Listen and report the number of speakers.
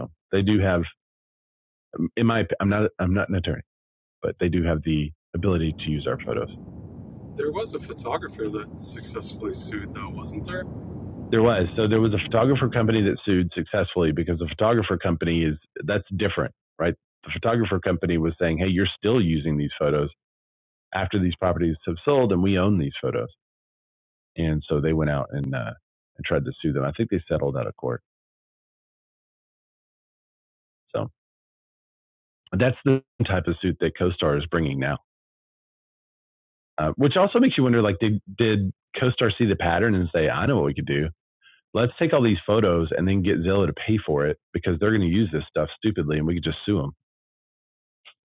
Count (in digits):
2